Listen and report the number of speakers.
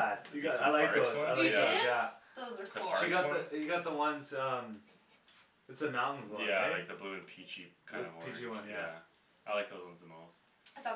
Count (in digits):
3